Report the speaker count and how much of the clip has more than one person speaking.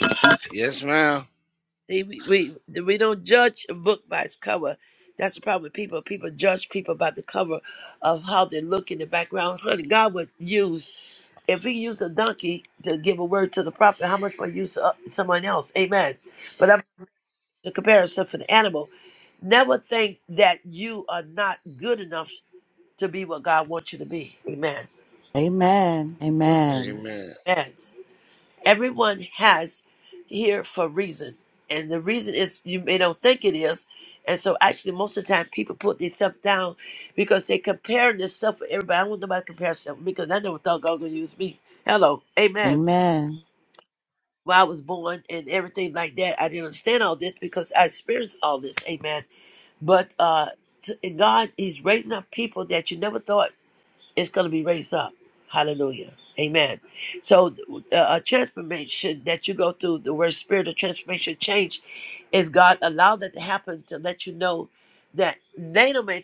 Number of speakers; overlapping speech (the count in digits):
3, about 1%